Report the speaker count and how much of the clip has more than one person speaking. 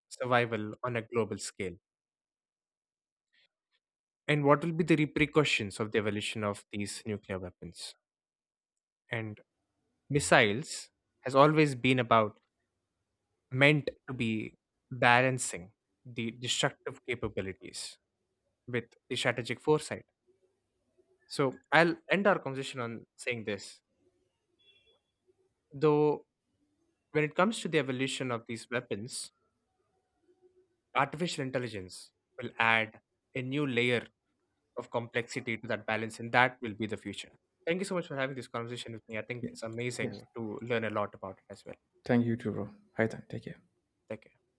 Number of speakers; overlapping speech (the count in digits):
2, about 1%